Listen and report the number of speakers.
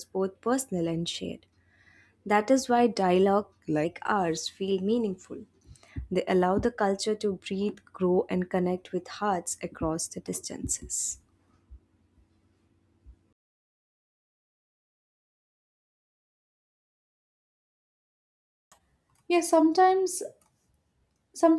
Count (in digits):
2